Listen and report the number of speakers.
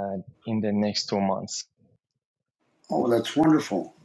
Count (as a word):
two